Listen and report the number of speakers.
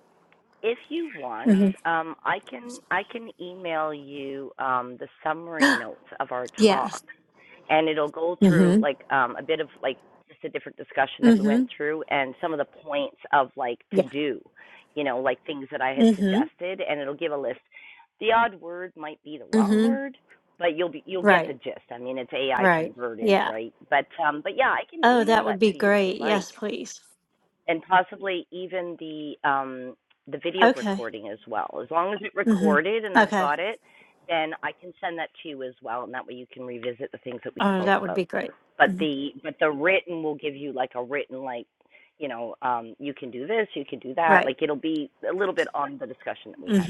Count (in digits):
2